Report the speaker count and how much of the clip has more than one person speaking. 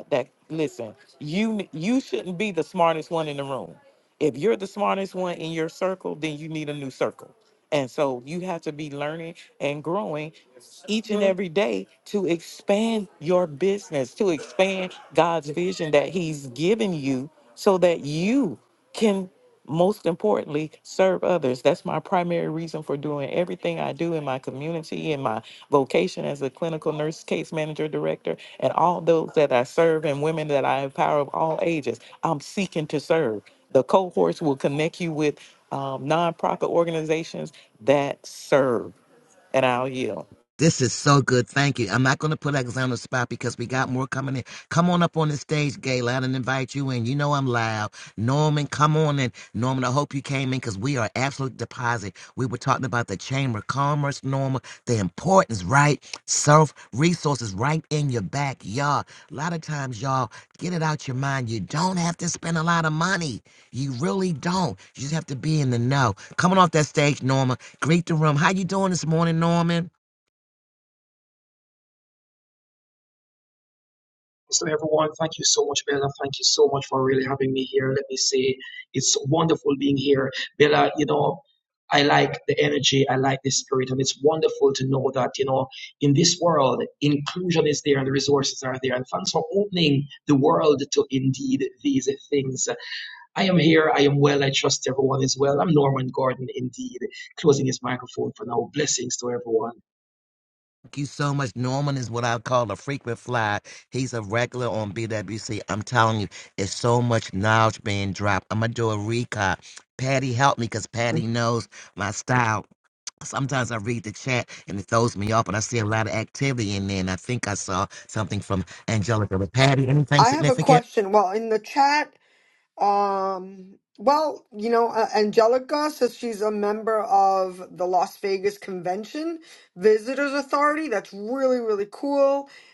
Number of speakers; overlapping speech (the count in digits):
4, under 1%